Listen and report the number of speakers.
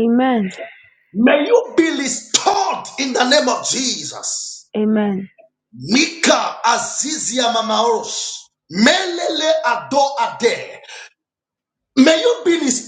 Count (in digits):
2